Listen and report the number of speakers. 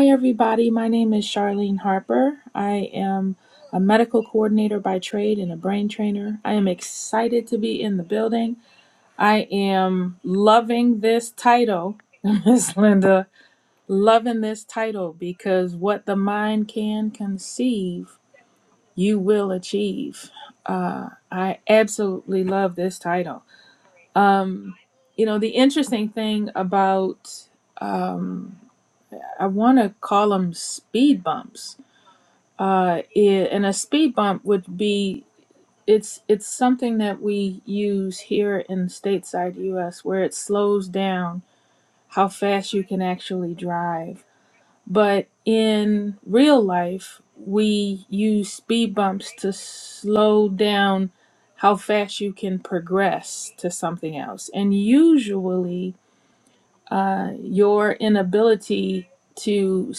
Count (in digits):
1